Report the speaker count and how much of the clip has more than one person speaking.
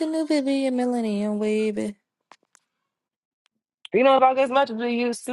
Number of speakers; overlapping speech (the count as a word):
two, no overlap